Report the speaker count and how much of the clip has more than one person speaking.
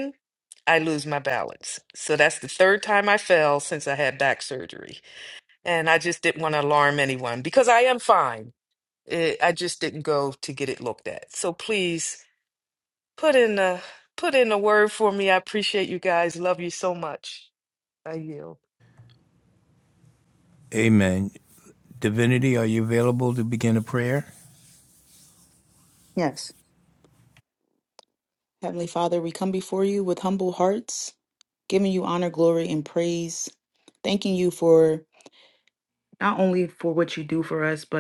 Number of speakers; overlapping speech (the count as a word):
three, no overlap